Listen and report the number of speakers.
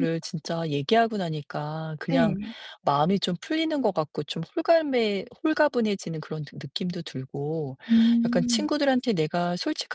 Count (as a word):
two